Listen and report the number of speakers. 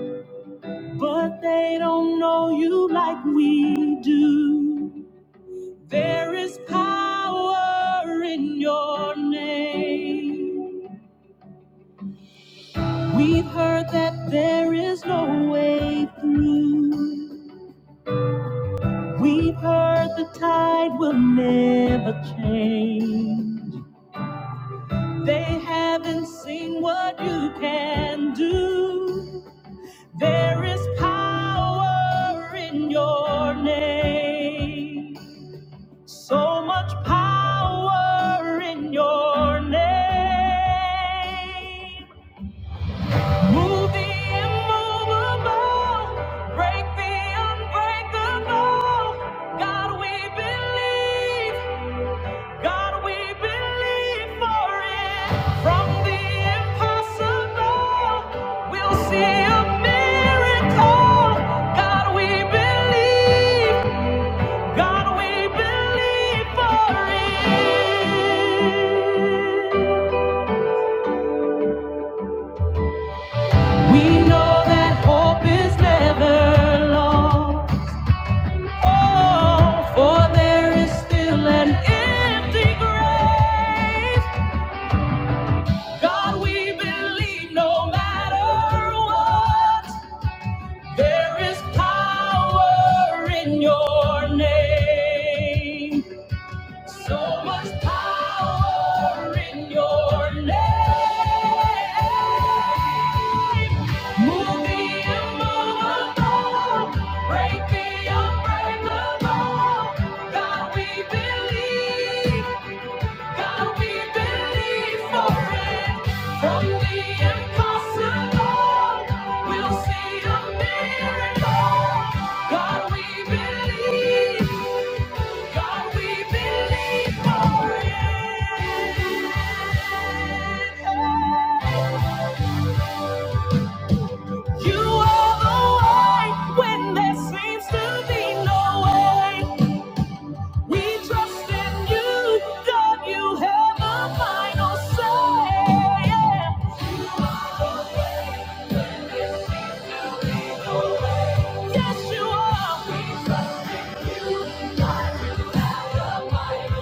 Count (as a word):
one